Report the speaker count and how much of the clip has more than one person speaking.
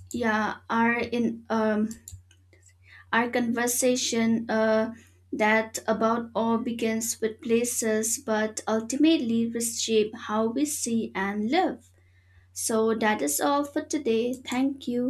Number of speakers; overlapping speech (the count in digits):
1, no overlap